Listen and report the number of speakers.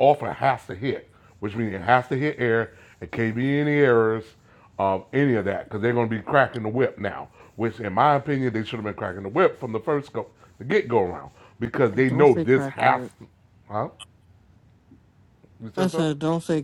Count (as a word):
two